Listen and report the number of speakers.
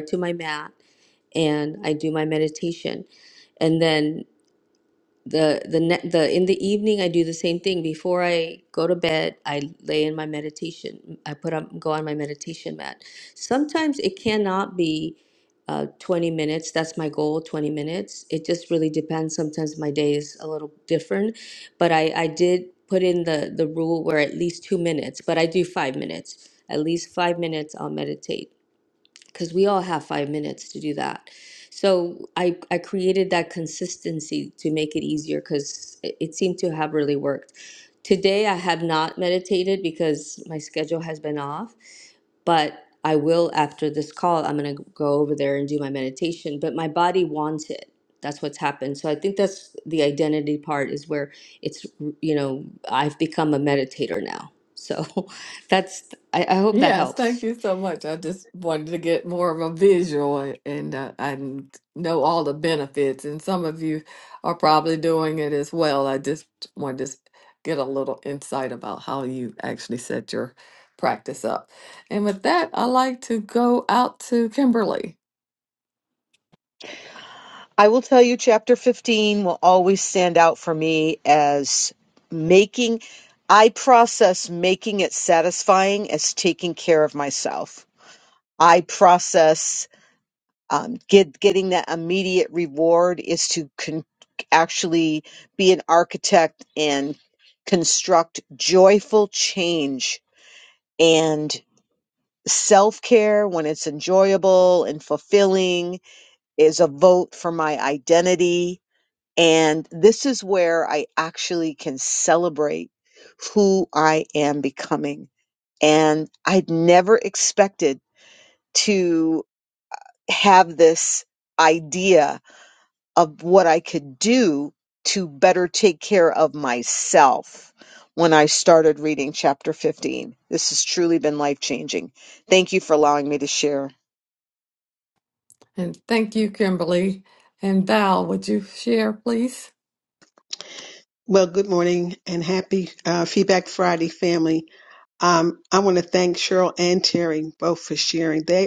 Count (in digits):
4